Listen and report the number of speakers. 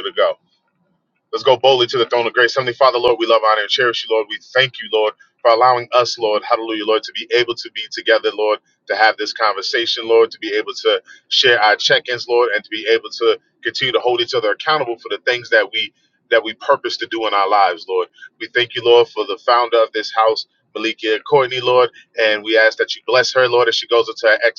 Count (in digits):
1